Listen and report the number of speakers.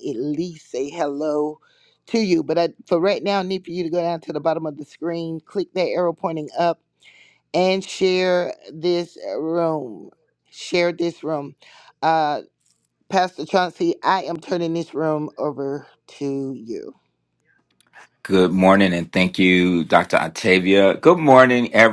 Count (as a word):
two